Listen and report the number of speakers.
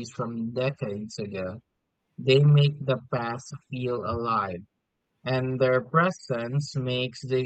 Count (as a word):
one